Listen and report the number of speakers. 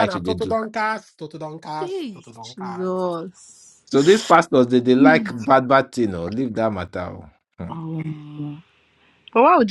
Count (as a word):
three